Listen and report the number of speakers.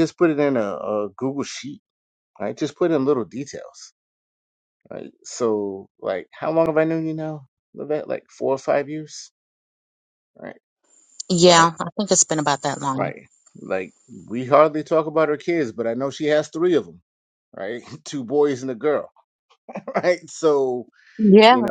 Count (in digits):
2